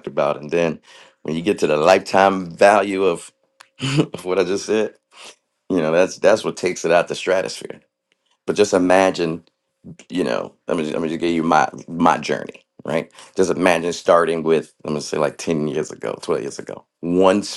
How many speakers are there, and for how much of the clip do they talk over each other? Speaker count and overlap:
1, no overlap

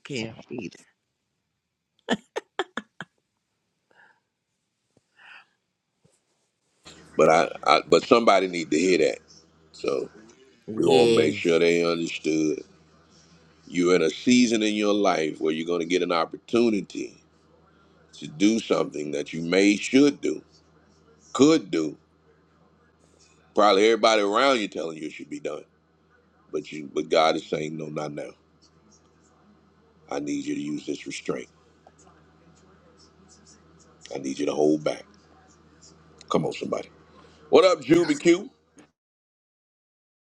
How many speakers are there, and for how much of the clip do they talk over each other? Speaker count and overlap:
2, about 2%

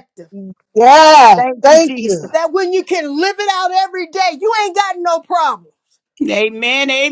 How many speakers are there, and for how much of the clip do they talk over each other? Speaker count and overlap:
3, about 13%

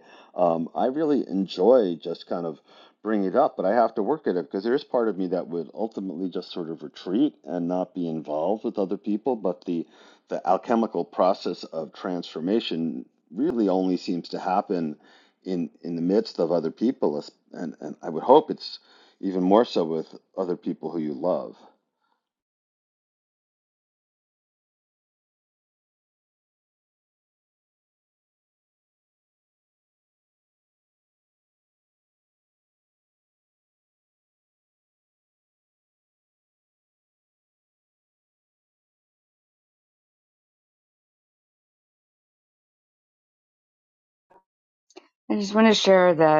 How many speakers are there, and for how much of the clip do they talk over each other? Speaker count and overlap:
2, no overlap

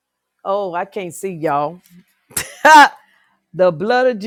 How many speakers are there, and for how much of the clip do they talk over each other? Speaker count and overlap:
1, no overlap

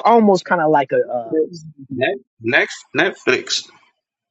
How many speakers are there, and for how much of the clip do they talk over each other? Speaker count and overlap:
2, about 2%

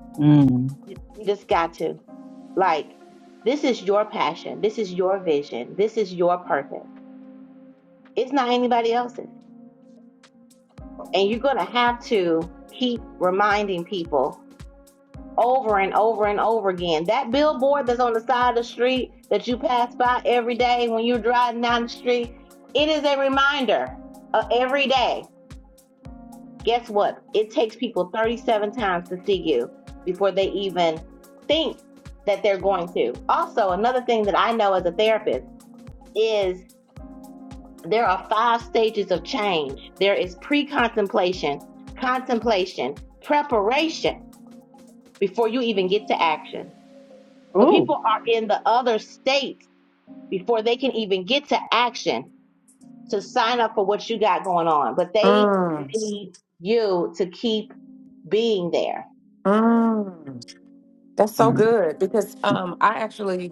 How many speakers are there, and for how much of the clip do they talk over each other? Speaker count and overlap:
3, about 1%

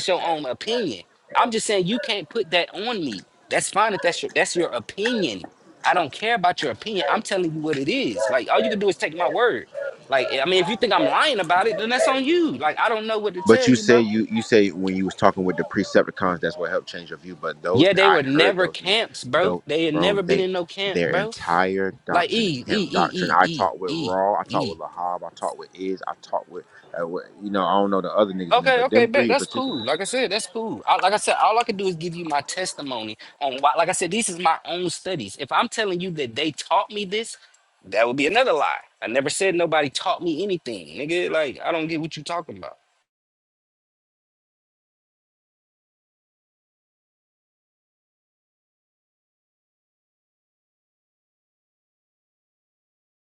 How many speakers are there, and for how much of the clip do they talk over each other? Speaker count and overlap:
2, about 12%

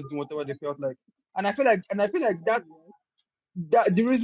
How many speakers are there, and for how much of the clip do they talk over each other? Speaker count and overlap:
1, no overlap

